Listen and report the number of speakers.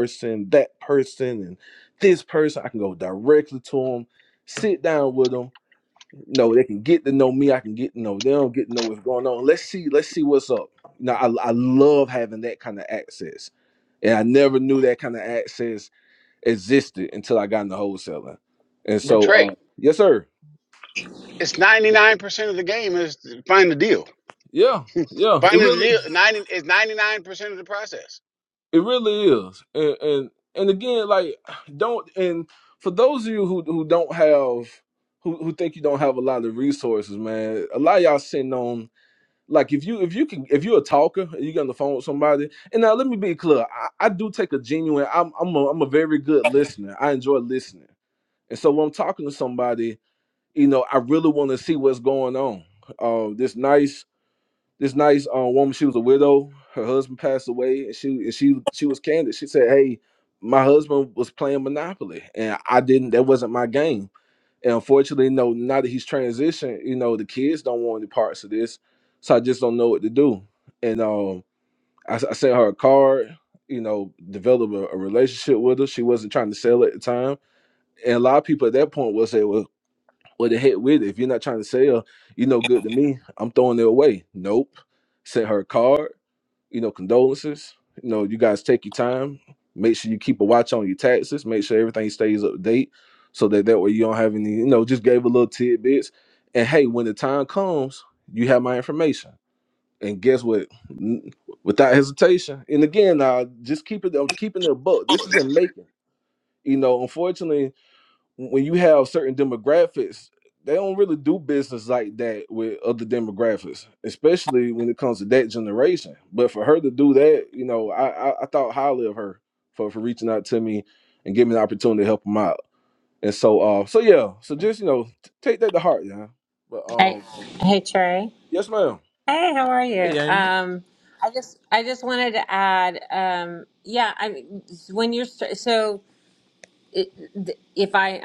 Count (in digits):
3